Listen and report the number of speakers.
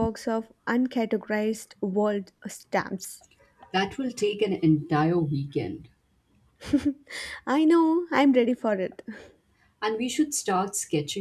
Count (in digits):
2